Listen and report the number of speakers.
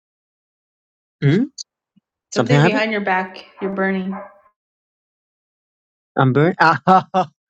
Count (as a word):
two